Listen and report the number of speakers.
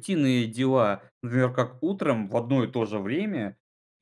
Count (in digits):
1